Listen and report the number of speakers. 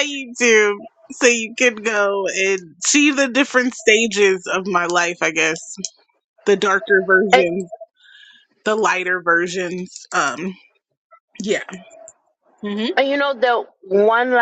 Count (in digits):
2